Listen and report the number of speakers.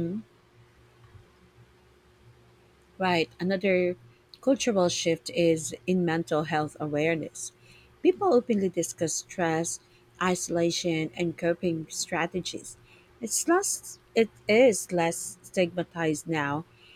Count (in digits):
1